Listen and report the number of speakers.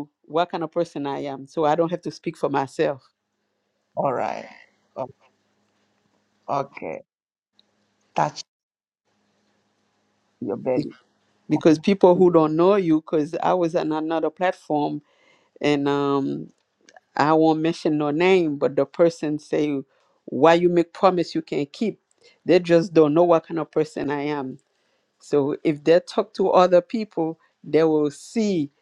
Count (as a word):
two